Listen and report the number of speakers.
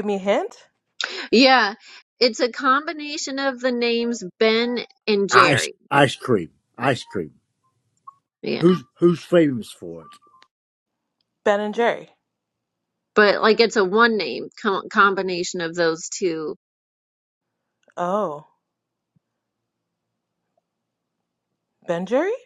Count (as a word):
three